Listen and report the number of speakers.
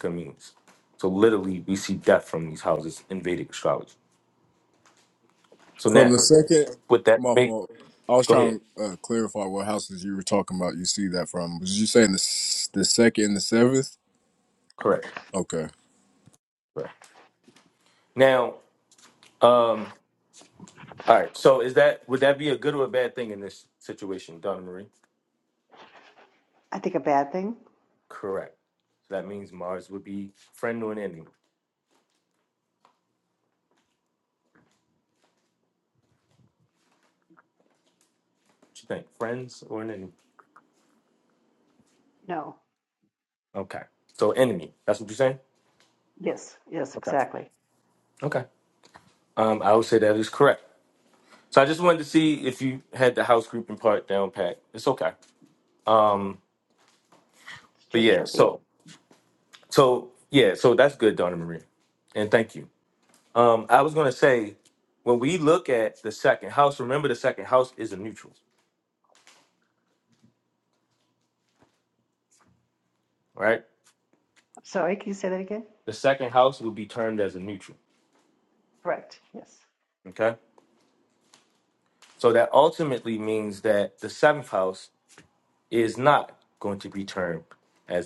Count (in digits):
3